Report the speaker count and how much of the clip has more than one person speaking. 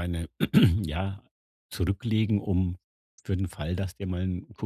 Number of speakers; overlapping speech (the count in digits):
1, no overlap